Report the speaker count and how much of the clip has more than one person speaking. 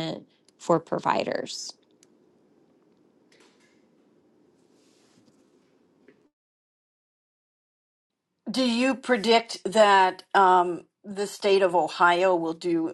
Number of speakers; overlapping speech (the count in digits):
2, no overlap